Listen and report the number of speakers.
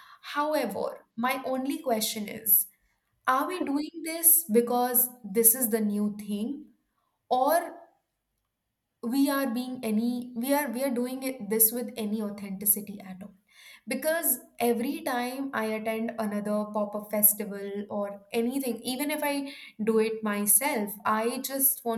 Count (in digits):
1